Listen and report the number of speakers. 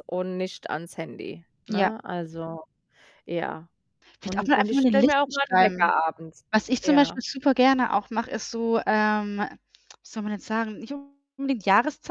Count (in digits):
2